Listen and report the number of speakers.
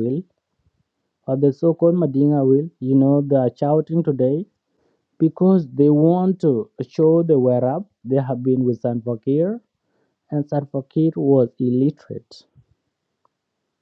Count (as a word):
one